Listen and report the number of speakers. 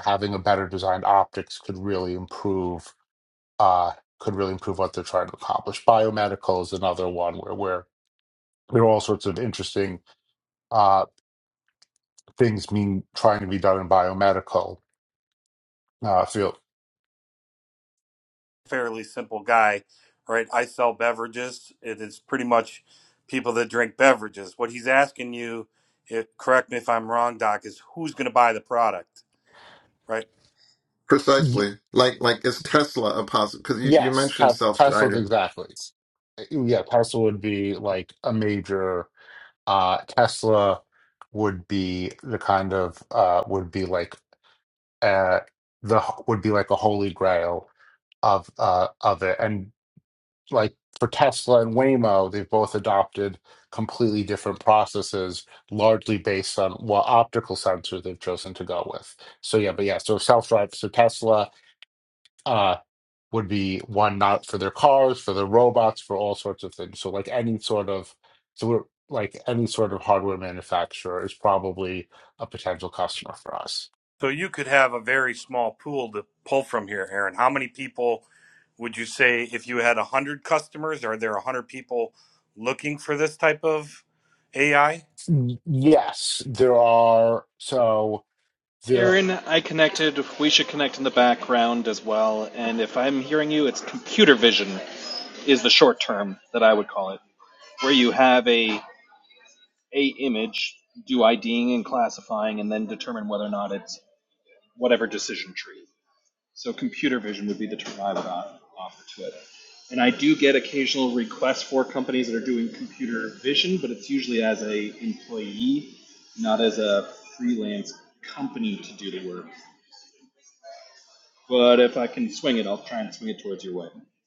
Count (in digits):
4